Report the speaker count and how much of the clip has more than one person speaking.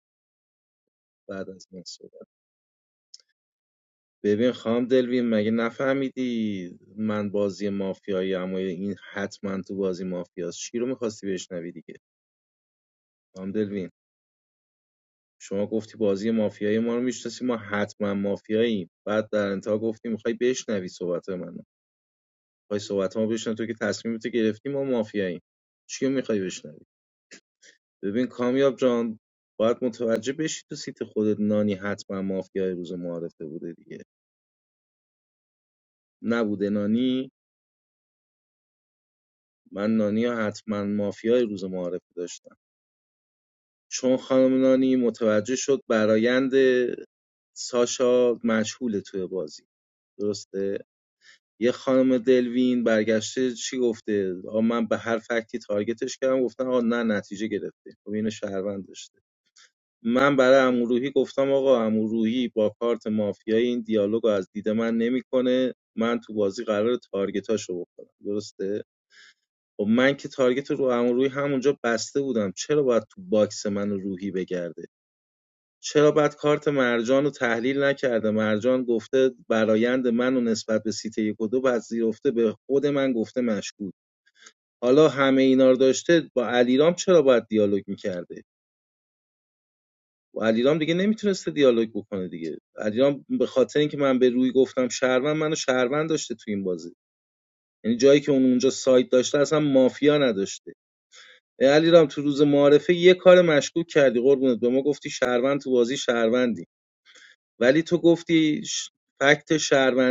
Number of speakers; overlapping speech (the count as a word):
one, no overlap